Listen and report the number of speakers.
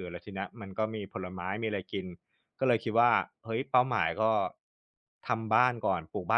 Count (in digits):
1